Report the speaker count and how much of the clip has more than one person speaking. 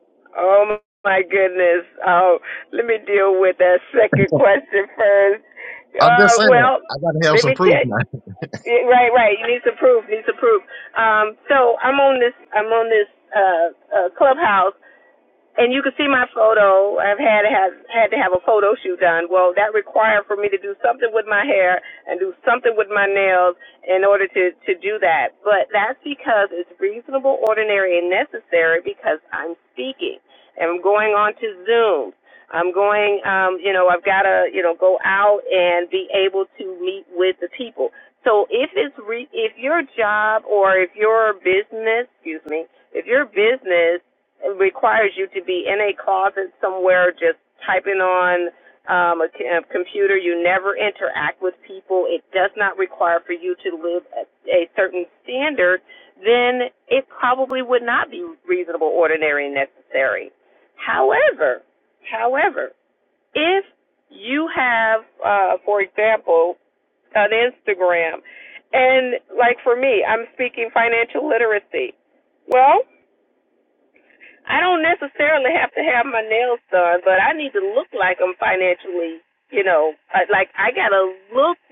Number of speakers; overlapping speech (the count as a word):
two, about 2%